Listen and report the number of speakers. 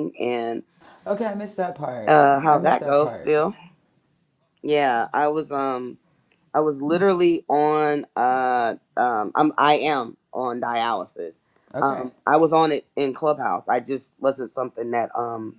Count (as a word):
two